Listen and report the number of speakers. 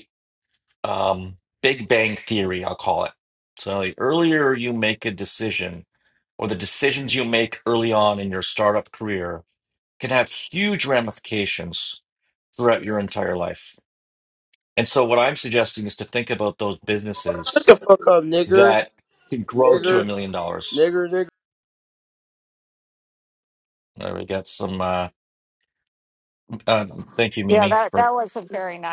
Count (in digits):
3